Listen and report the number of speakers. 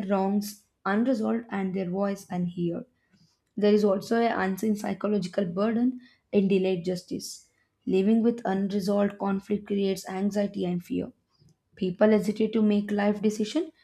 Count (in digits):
1